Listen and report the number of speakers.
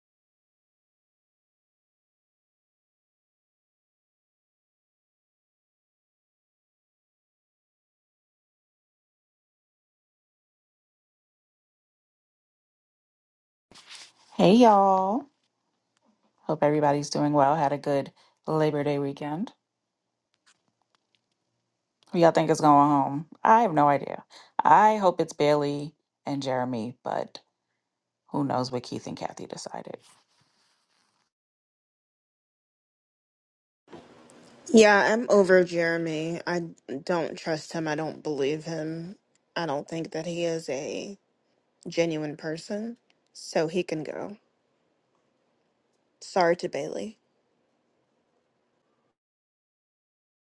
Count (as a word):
two